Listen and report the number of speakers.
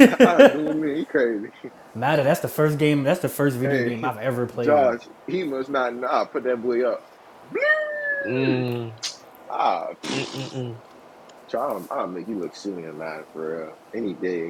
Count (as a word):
three